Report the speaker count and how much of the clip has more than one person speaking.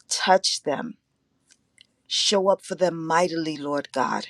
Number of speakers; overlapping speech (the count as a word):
one, no overlap